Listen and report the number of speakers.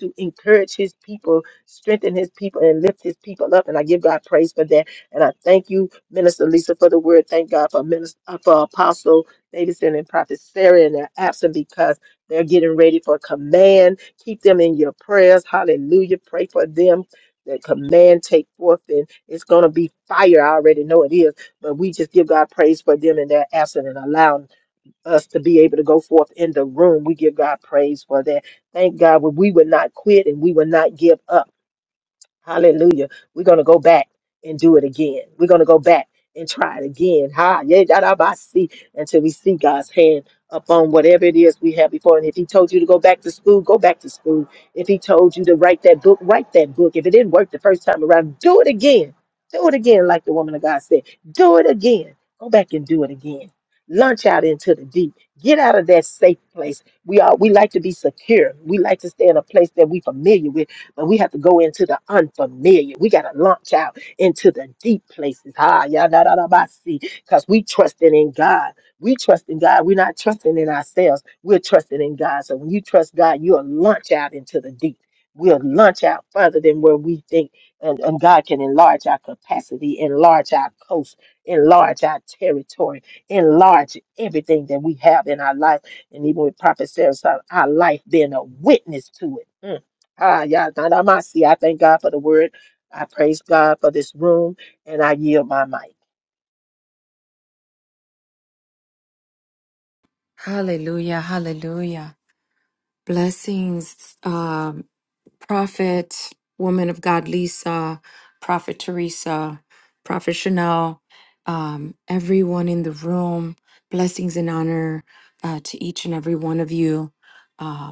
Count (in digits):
2